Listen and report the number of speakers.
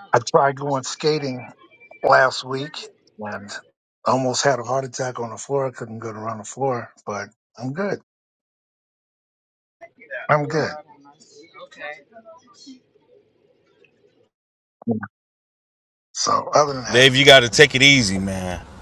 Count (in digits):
3